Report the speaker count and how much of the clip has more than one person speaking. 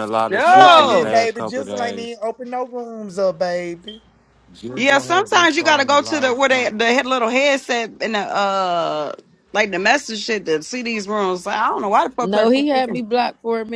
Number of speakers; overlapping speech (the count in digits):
4, about 29%